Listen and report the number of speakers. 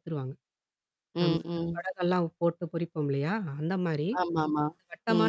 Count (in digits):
2